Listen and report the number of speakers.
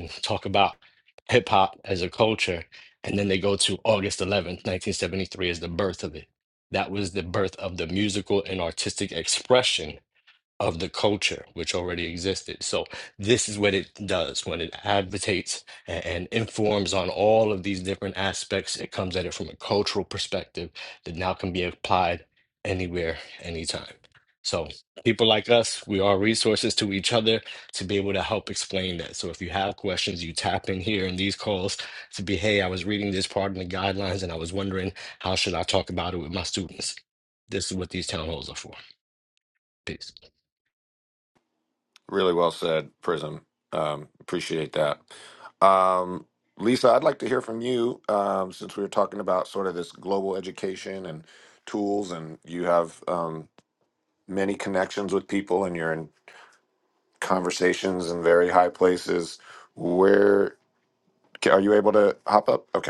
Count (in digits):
2